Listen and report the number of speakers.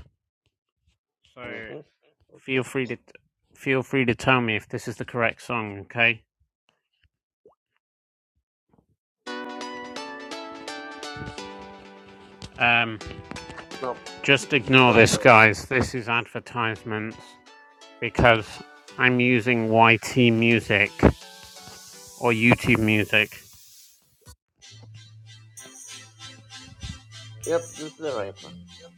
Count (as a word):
two